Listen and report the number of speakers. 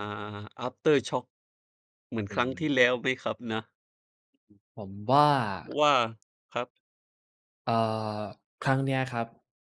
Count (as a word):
two